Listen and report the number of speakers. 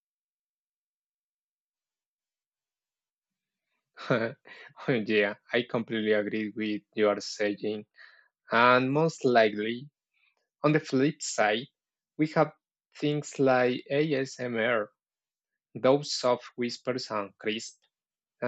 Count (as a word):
one